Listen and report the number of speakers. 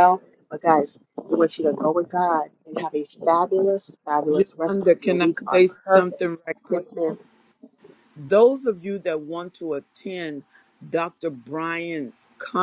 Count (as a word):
two